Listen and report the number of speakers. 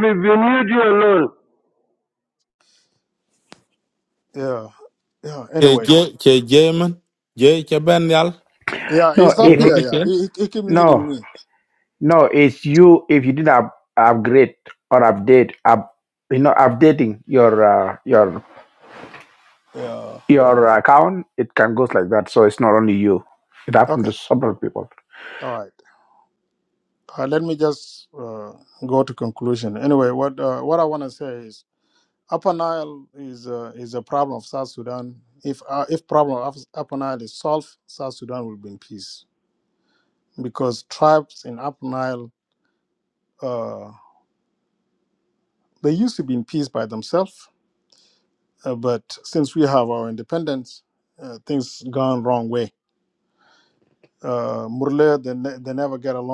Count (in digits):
4